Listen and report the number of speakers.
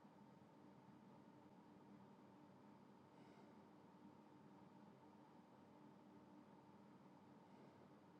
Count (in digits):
0